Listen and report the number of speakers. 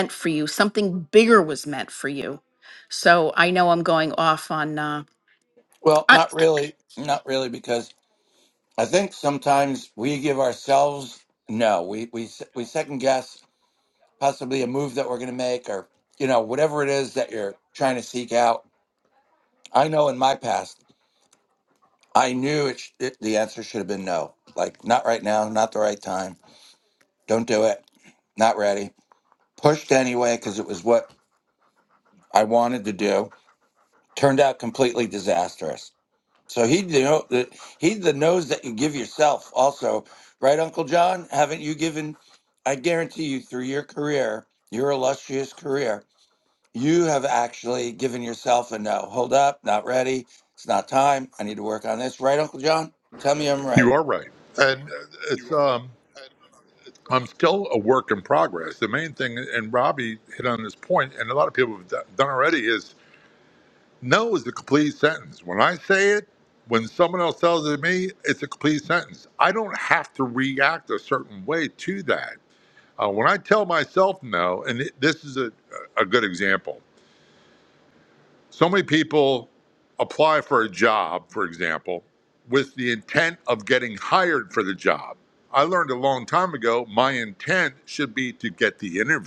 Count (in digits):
3